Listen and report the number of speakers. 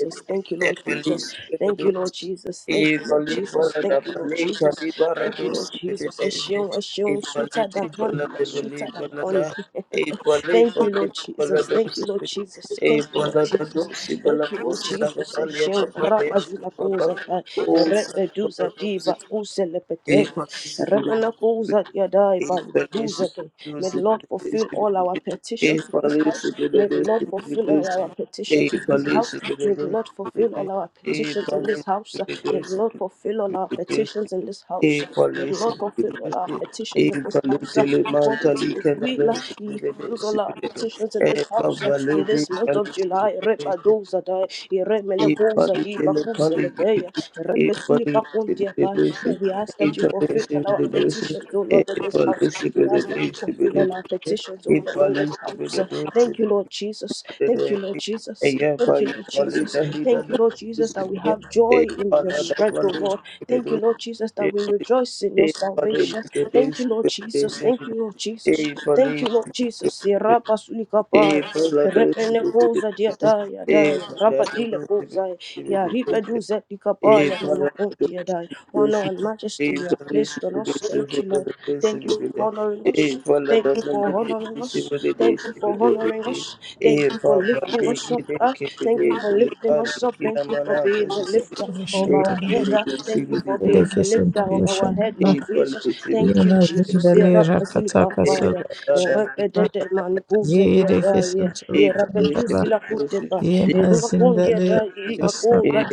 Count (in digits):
3